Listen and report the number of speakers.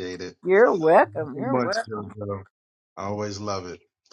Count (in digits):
2